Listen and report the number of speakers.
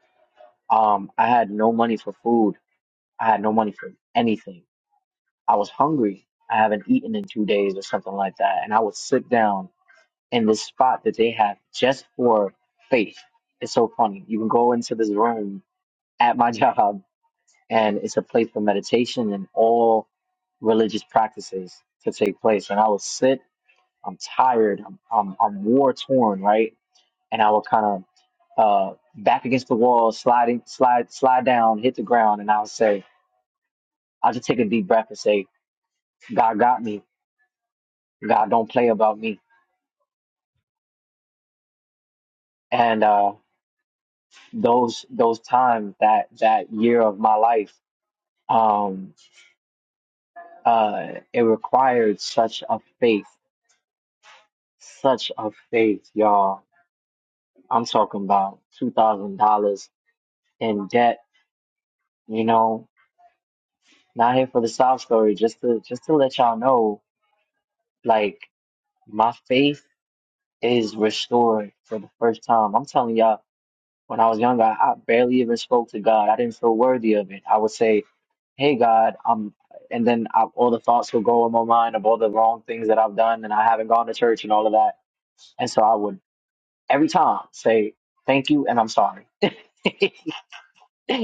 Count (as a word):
one